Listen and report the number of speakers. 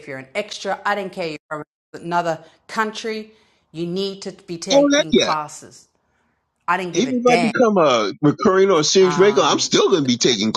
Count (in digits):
2